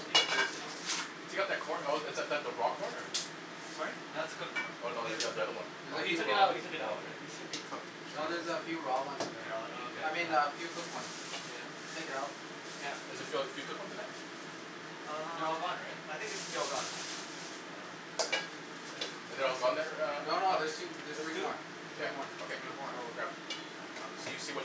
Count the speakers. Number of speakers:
4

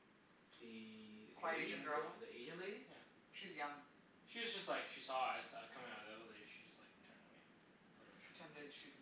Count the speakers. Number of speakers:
3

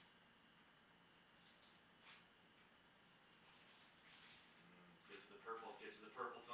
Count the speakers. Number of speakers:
1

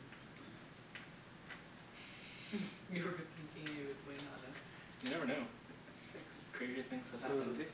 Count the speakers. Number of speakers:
2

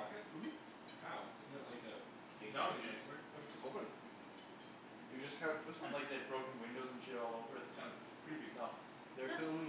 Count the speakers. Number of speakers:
3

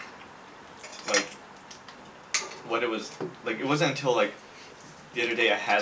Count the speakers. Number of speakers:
1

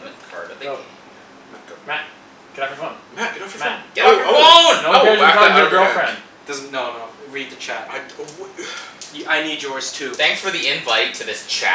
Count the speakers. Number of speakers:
4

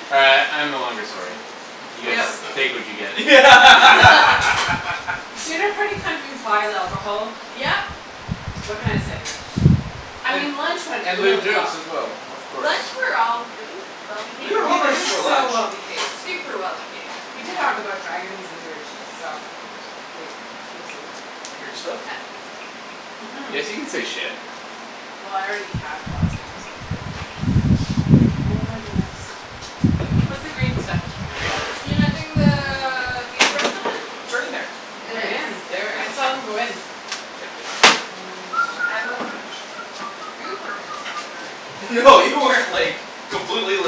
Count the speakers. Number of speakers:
4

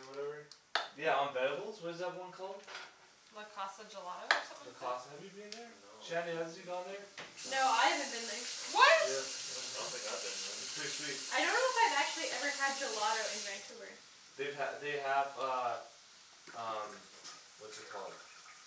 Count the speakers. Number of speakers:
4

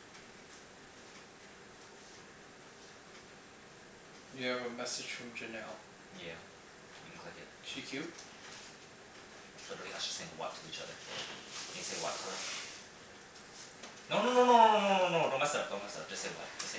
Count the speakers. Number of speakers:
2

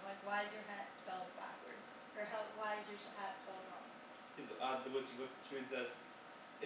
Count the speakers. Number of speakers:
2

